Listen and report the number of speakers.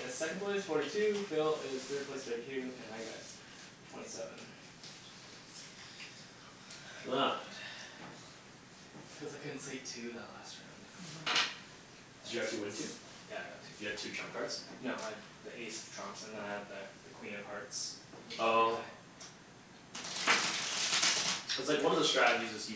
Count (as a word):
two